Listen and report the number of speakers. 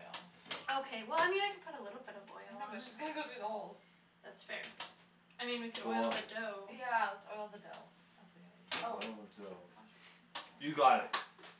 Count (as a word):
three